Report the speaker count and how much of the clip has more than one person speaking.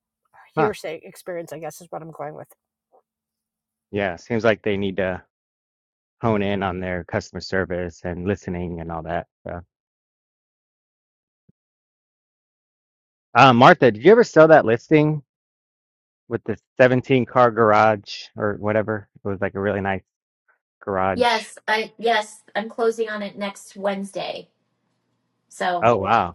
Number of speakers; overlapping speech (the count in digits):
3, about 1%